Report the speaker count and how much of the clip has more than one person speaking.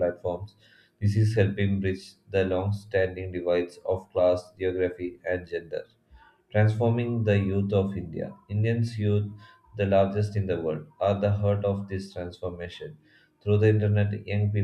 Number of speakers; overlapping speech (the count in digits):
1, no overlap